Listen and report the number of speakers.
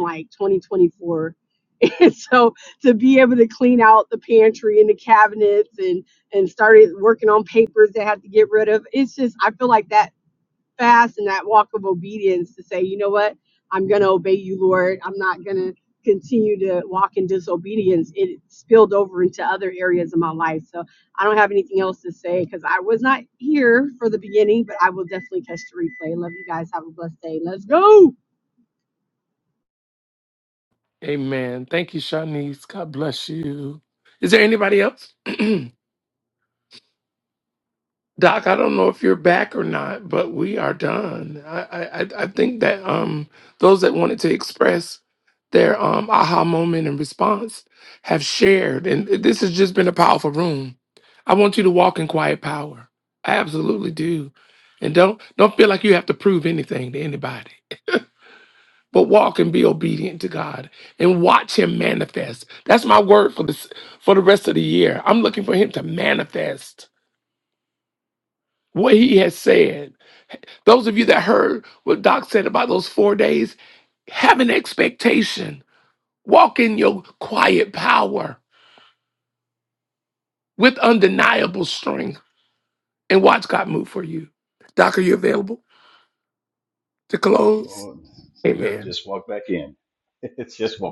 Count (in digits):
3